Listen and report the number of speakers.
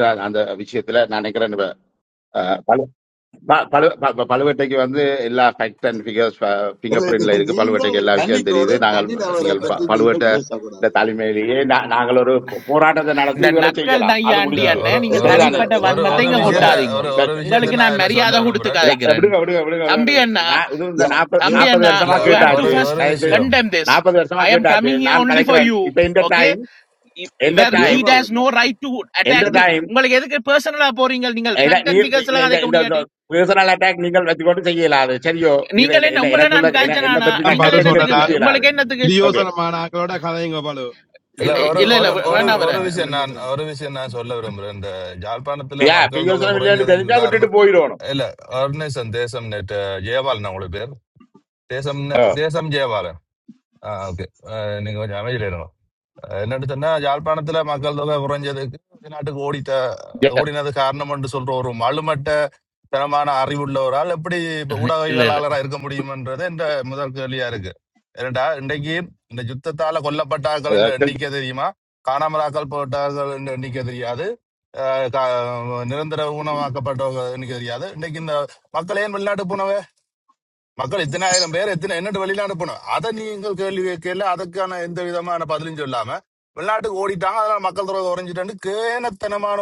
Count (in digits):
5